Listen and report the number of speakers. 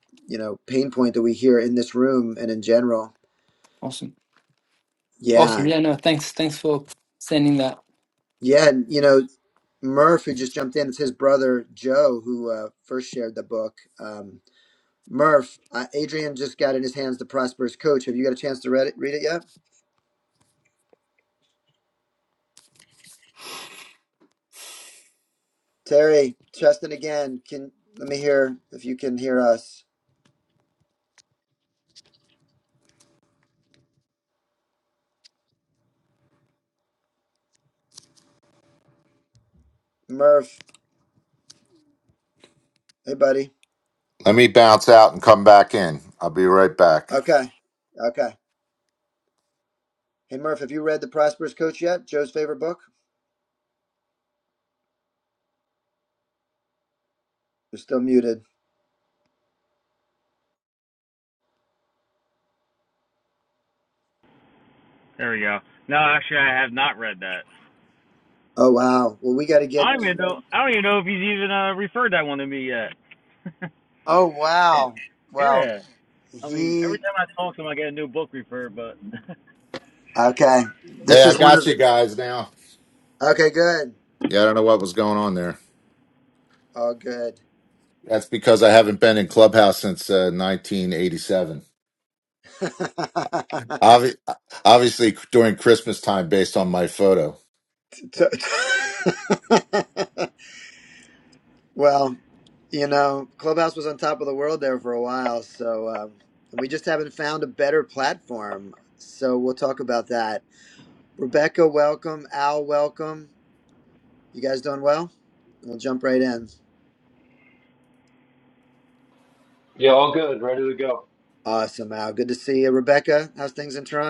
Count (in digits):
5